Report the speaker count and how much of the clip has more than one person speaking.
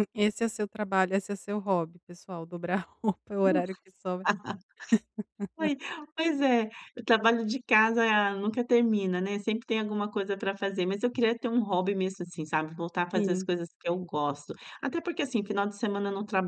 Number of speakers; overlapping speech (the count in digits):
2, about 2%